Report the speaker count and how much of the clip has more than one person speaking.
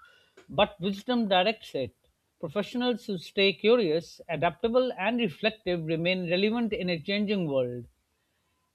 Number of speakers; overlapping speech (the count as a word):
one, no overlap